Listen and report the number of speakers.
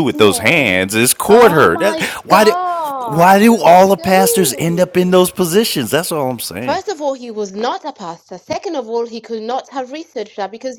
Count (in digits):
2